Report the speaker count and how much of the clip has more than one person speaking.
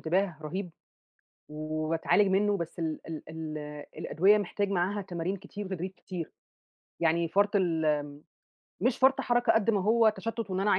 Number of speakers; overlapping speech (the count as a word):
one, no overlap